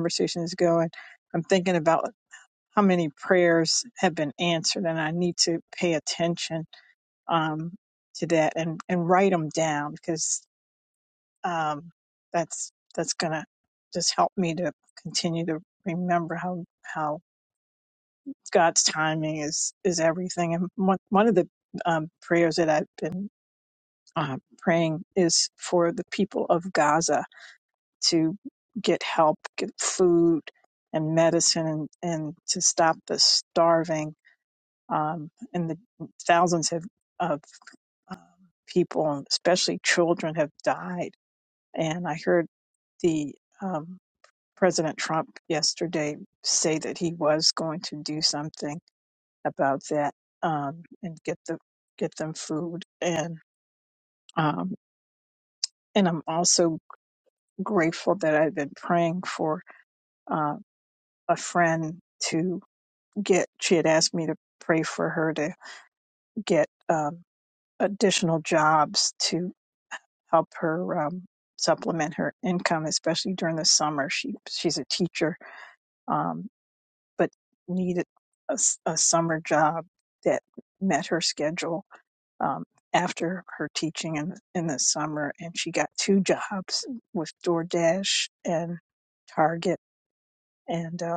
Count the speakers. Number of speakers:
1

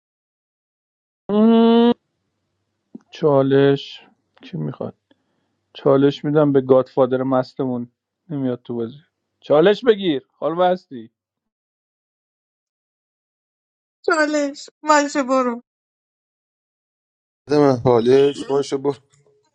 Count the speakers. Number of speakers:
3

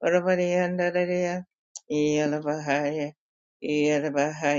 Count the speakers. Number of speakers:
1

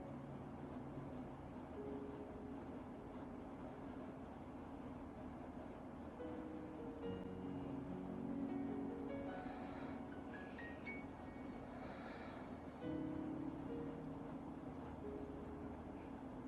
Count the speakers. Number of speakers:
0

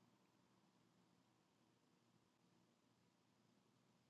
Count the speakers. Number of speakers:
0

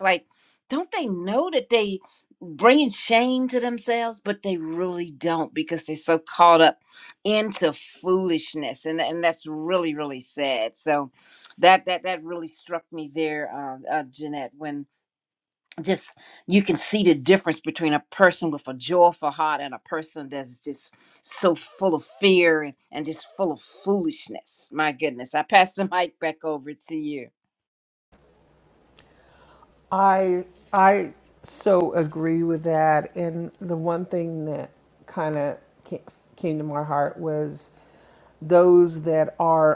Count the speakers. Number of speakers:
2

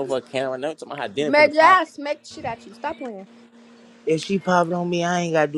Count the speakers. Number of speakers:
3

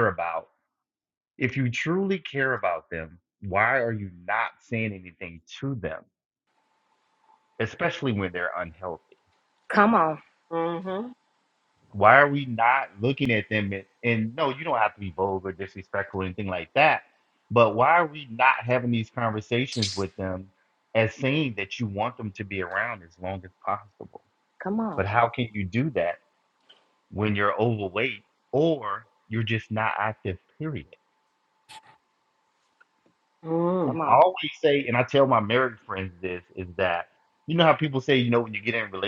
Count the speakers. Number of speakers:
3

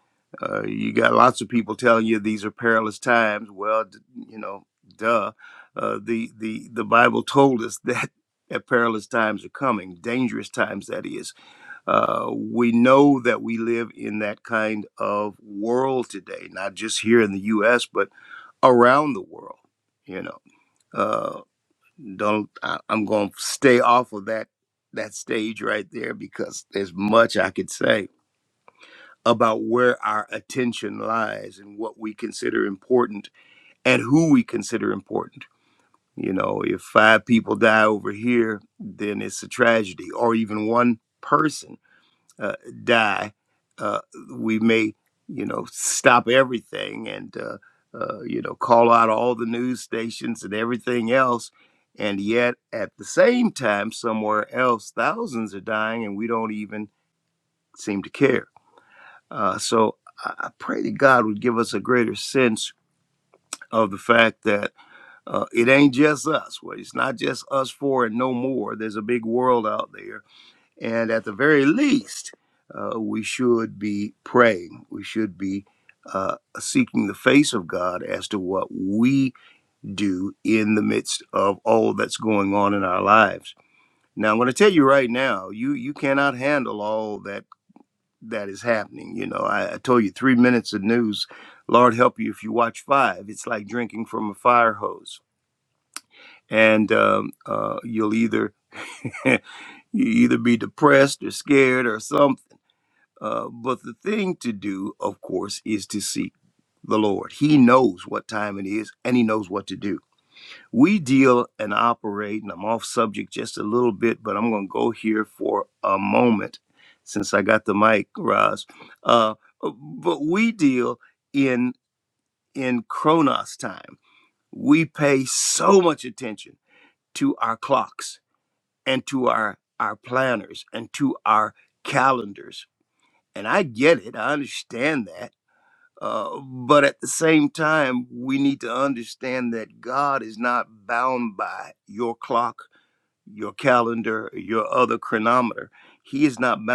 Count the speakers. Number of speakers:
1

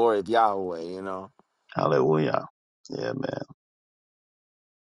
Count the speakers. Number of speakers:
2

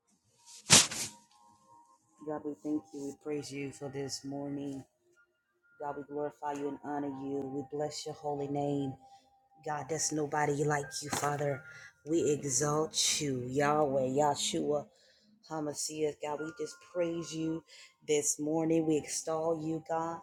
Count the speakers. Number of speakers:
1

